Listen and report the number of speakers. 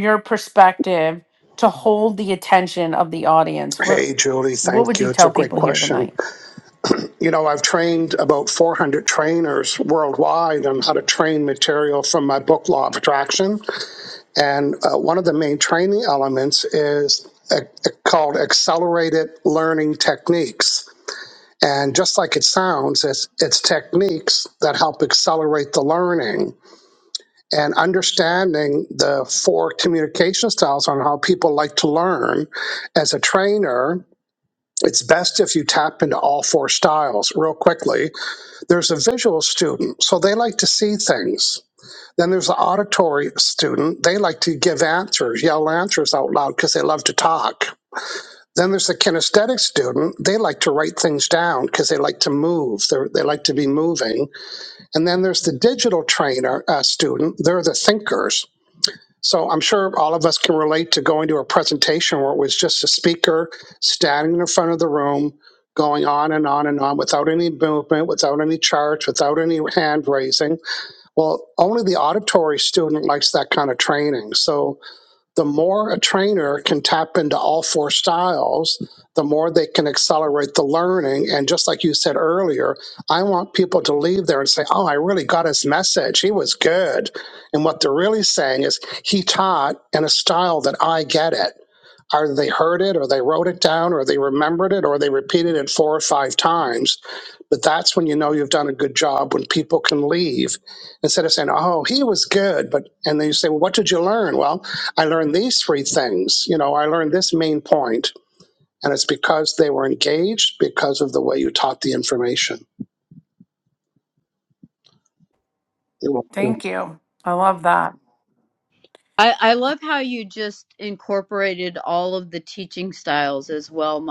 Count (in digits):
3